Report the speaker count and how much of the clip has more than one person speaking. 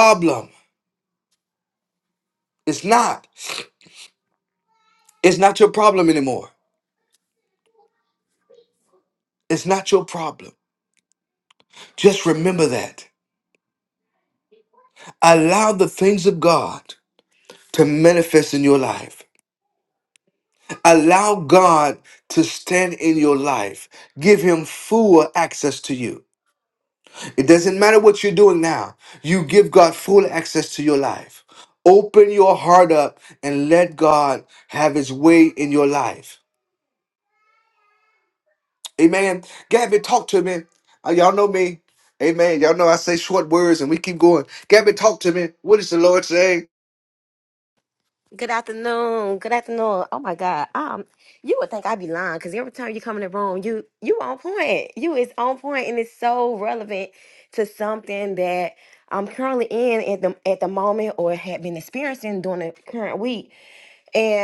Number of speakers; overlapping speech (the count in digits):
2, no overlap